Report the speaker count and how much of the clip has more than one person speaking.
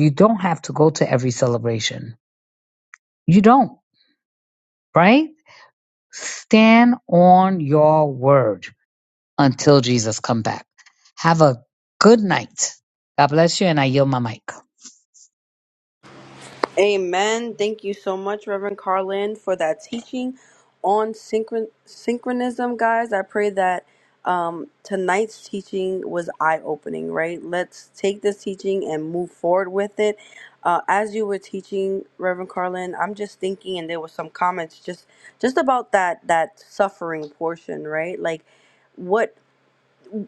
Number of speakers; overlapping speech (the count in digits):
2, no overlap